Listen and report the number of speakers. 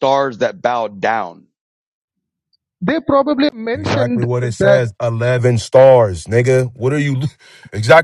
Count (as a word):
three